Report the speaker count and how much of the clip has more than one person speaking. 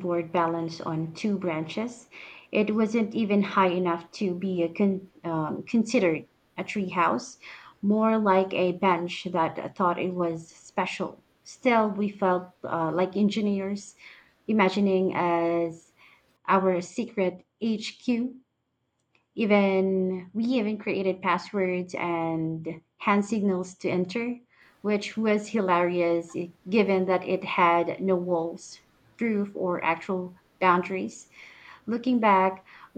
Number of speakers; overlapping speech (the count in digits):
1, no overlap